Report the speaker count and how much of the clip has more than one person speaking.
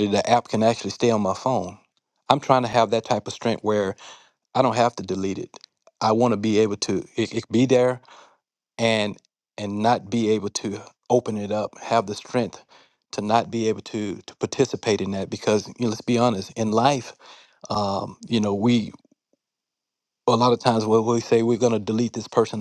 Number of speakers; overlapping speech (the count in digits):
1, no overlap